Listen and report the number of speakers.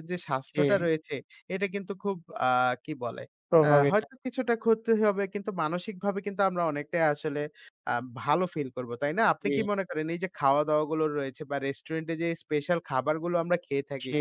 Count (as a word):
two